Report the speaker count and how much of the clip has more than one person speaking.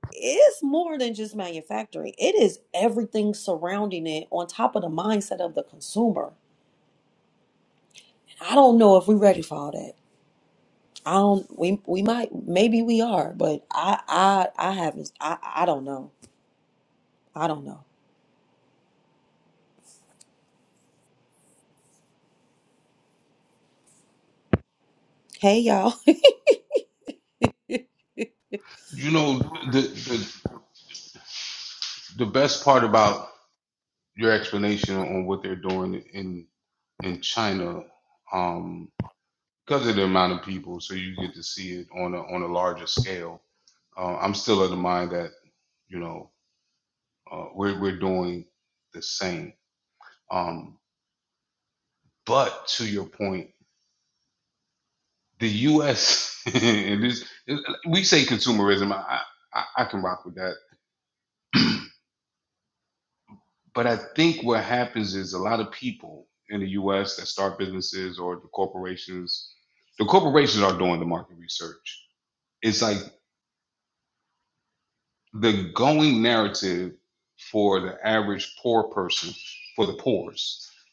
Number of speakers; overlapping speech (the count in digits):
2, no overlap